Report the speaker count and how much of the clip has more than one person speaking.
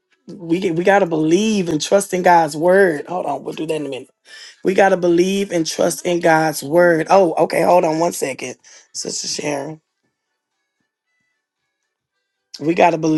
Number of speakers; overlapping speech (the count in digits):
1, no overlap